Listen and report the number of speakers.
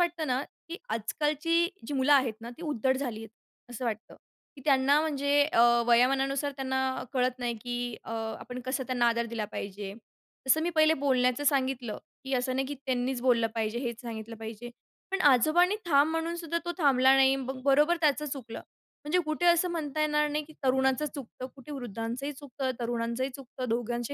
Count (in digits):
1